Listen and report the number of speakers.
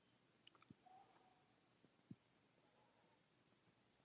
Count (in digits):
0